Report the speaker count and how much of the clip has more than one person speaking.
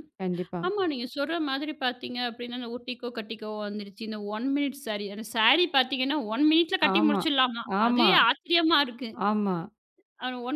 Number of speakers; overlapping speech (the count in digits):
2, about 8%